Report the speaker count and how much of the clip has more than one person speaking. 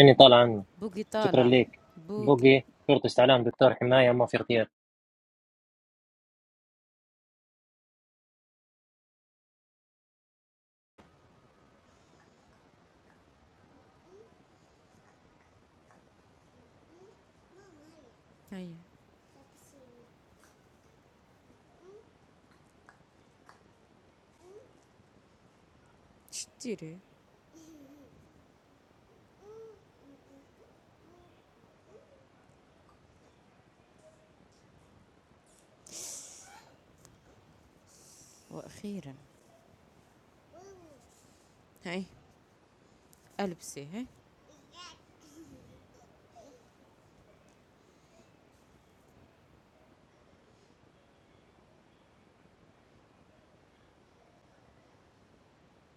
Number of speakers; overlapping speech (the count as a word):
two, about 1%